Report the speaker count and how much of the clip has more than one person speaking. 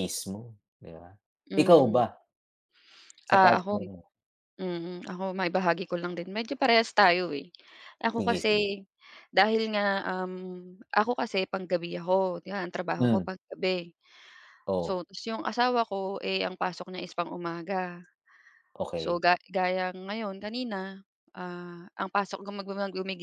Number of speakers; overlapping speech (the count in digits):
2, about 9%